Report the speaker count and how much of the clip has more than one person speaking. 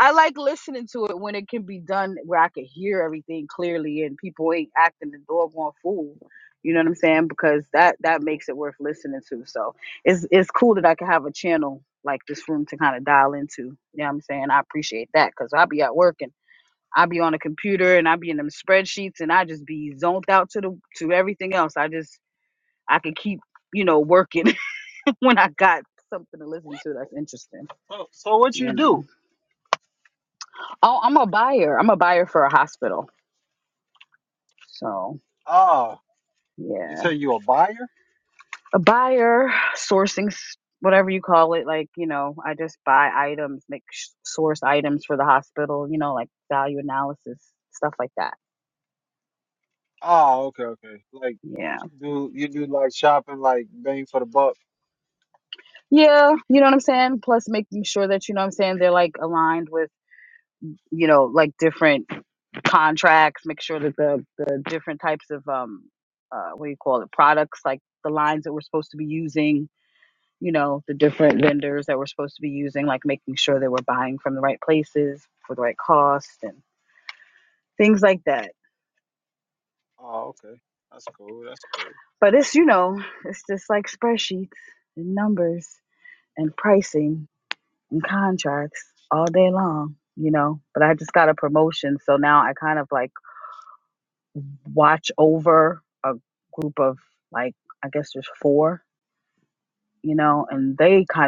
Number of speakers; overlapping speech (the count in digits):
2, about 1%